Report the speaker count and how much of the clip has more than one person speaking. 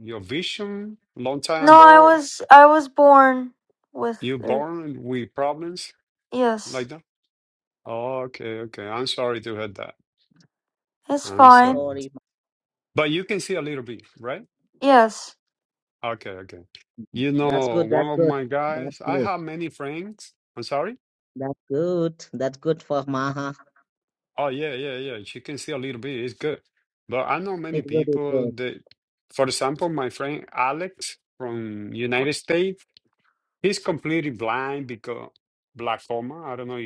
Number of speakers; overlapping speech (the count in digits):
3, about 11%